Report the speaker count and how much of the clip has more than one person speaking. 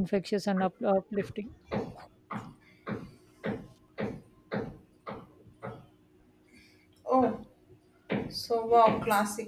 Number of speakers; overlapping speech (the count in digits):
2, no overlap